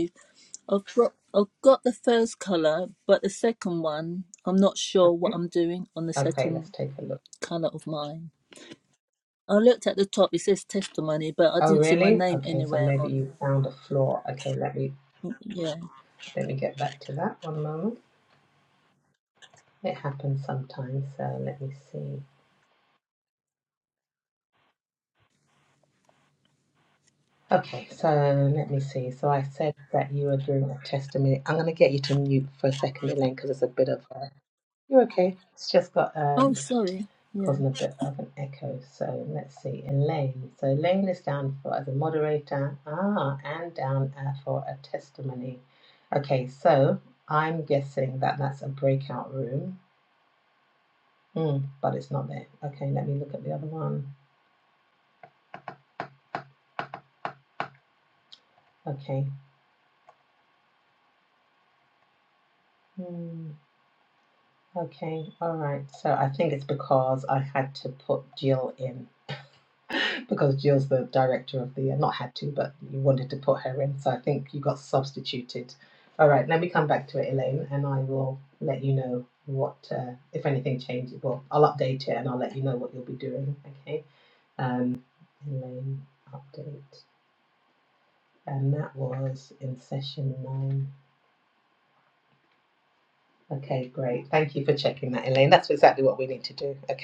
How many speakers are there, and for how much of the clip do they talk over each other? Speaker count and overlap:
2, about 3%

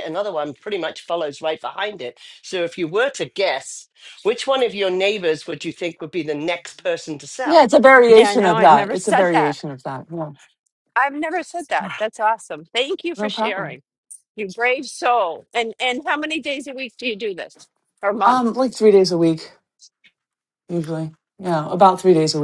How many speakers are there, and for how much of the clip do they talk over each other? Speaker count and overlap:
3, about 11%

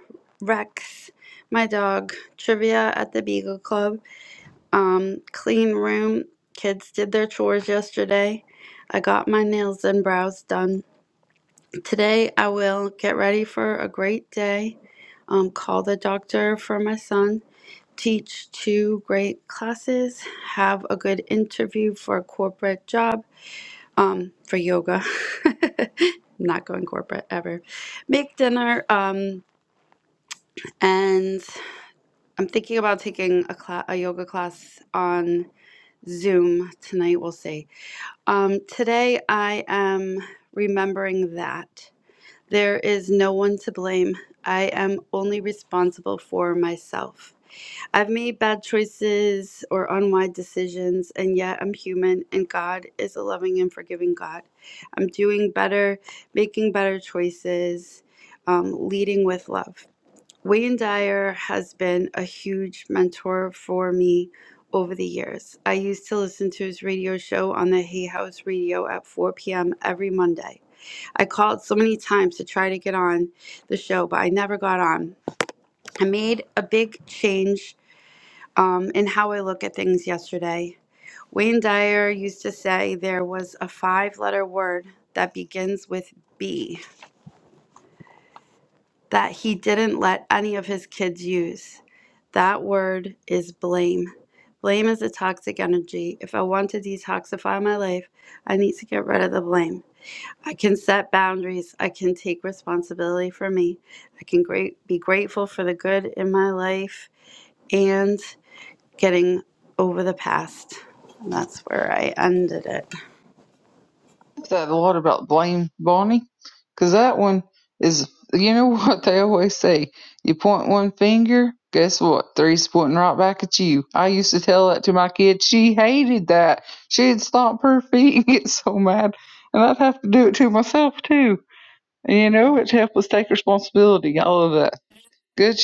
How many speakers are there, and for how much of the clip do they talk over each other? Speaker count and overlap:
2, no overlap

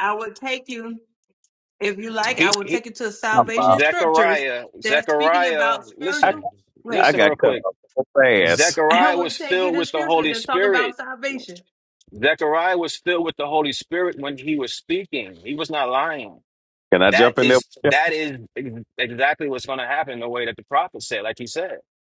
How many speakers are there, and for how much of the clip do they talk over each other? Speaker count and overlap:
3, about 30%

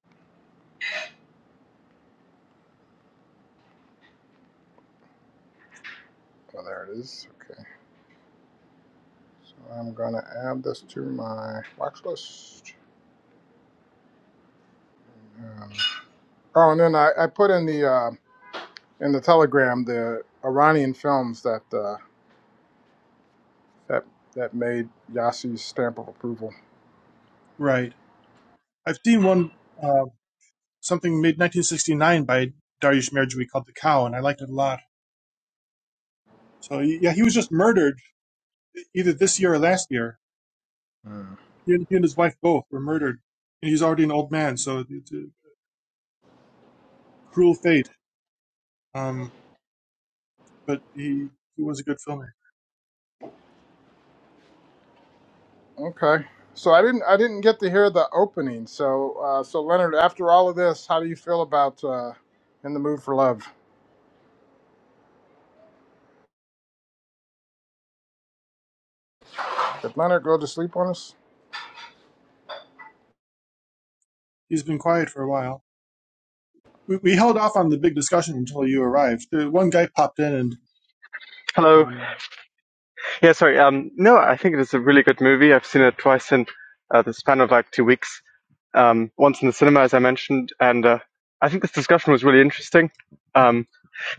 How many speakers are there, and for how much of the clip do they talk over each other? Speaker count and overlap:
3, under 1%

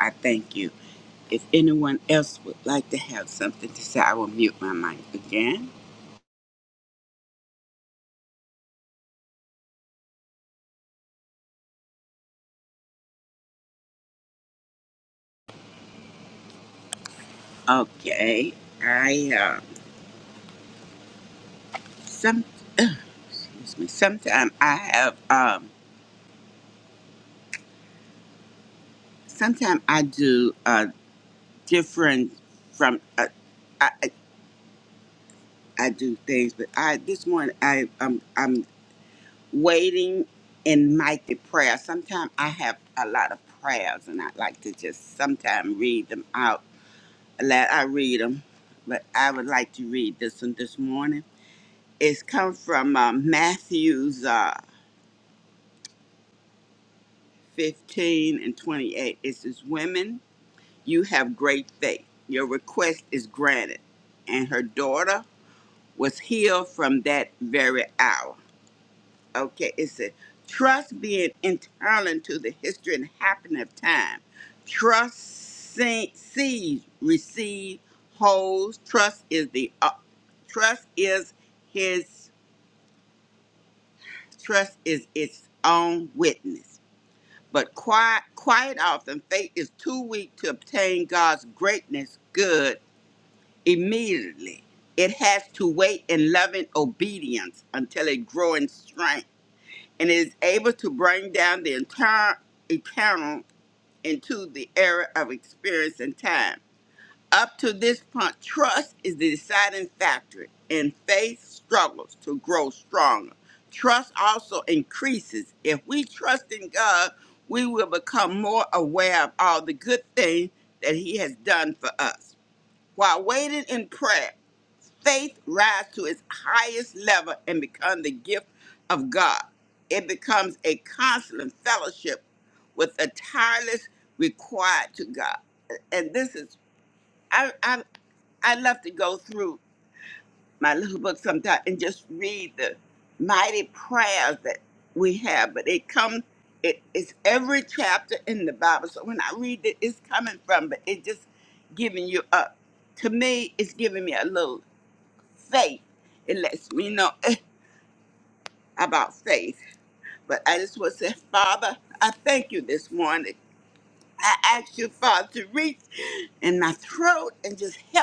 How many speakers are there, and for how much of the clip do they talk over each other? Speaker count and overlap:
1, no overlap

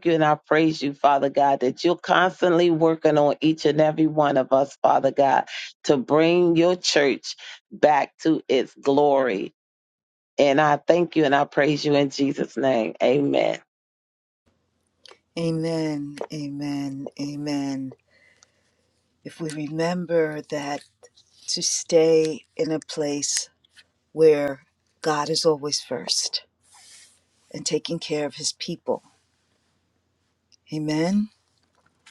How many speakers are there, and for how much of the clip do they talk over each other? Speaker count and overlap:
2, no overlap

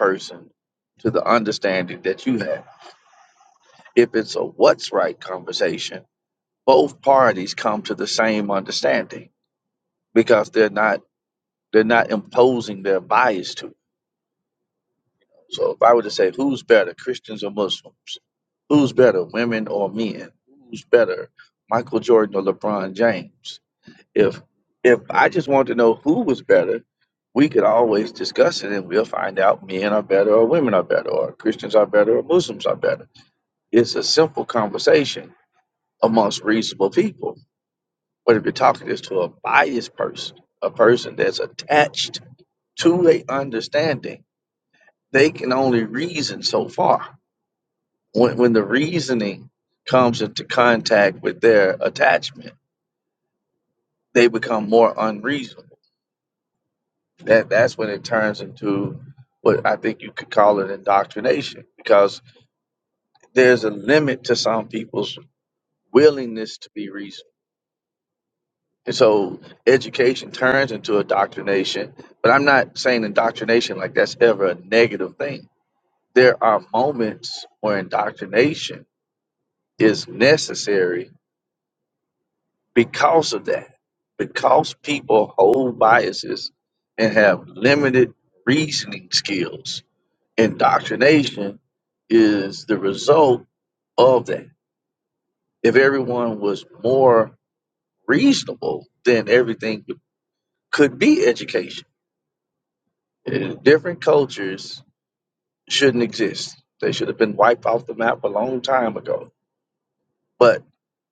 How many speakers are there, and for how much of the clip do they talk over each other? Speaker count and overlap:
1, no overlap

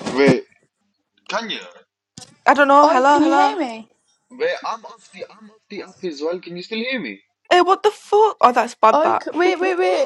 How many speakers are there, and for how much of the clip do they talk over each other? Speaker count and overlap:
3, about 11%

